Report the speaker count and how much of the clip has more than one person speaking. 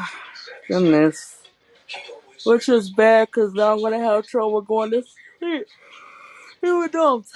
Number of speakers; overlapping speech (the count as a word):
one, no overlap